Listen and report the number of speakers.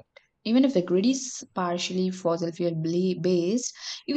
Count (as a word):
one